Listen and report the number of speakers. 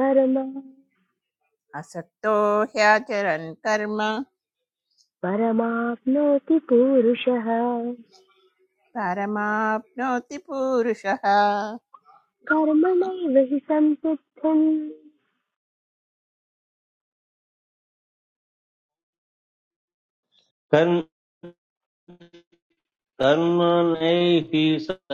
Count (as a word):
three